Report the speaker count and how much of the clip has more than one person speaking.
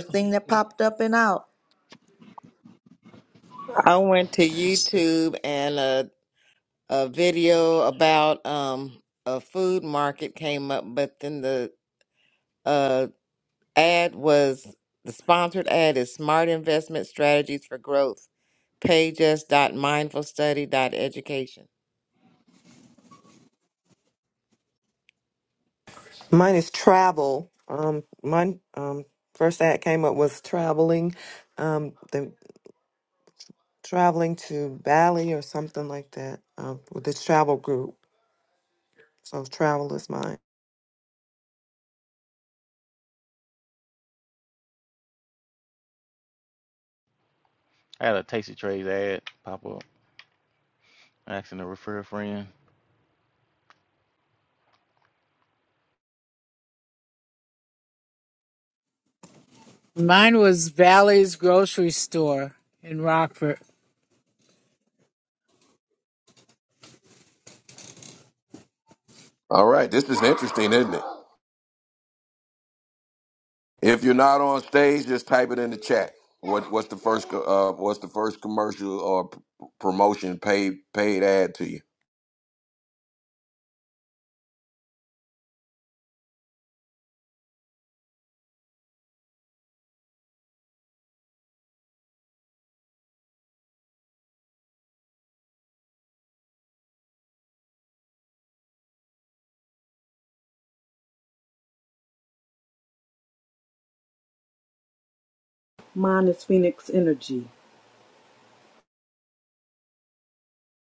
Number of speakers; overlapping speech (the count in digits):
7, under 1%